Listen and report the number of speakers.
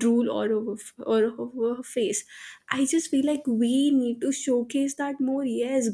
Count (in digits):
1